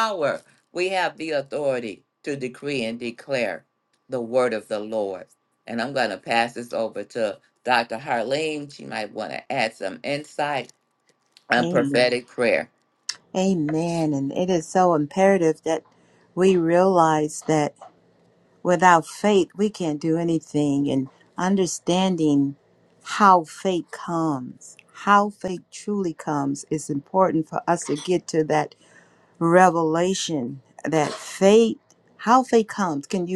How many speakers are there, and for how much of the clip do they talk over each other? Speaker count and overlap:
two, about 1%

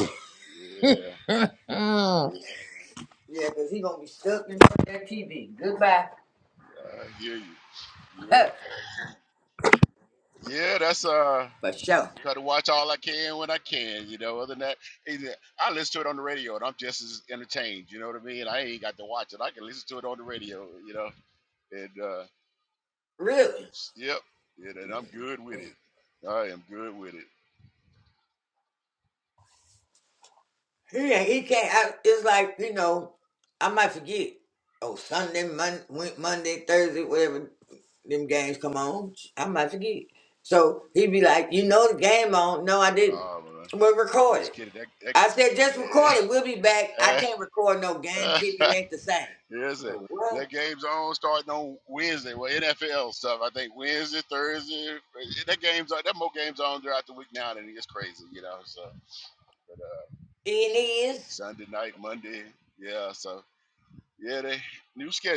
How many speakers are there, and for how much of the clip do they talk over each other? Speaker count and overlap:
two, about 2%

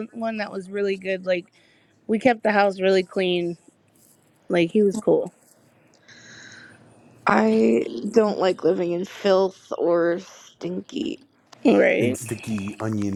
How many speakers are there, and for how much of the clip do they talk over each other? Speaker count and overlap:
three, about 2%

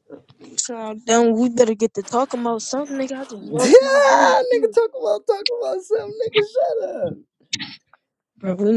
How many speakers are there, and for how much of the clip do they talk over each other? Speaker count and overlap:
two, about 7%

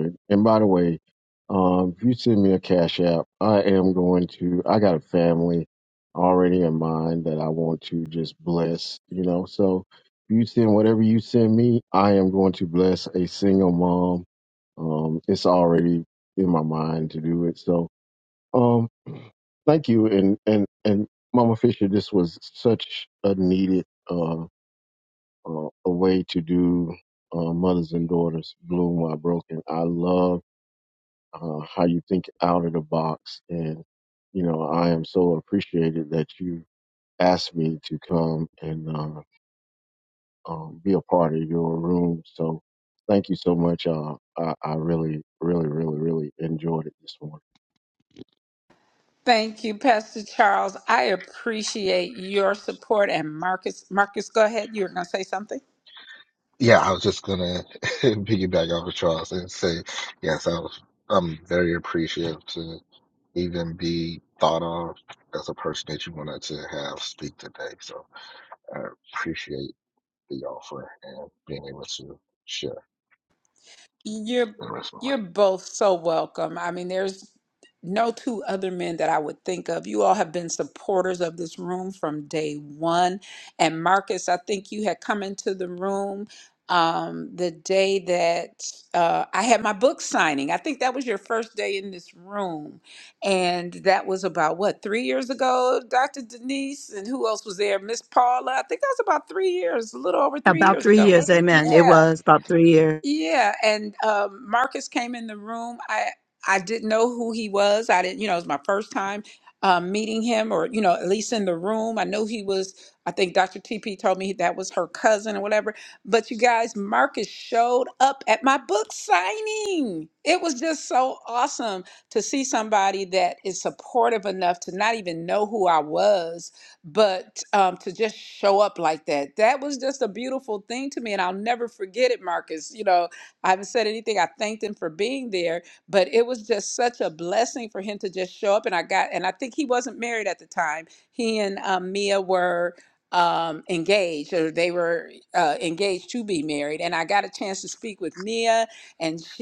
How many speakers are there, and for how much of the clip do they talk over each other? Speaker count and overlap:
four, about 1%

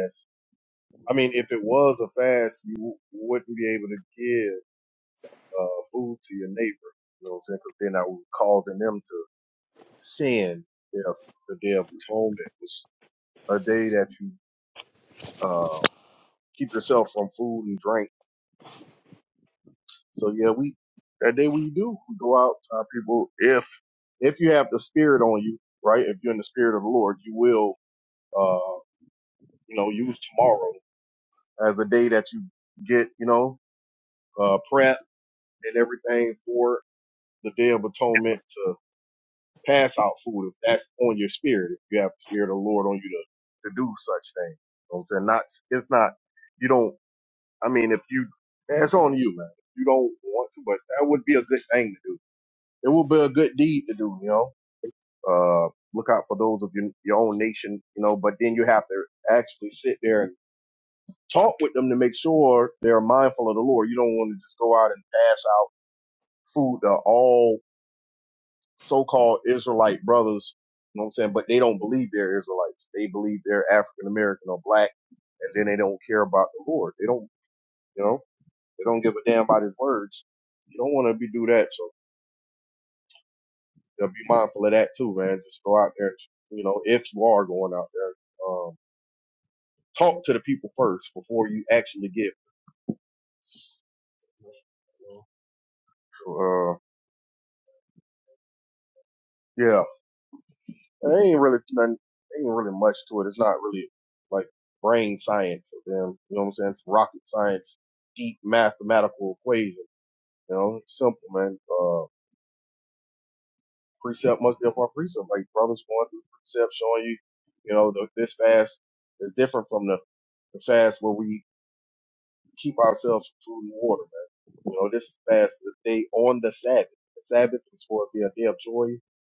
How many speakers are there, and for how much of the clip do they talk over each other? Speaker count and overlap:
one, no overlap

